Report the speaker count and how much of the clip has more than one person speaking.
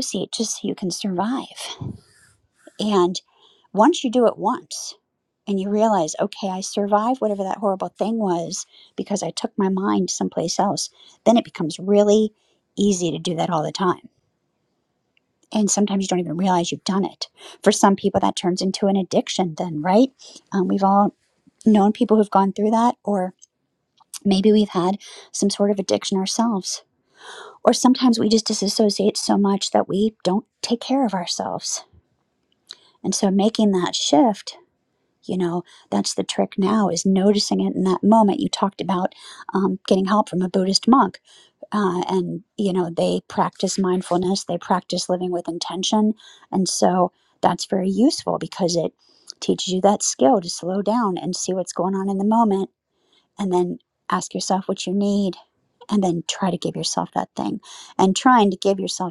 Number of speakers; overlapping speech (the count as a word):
one, no overlap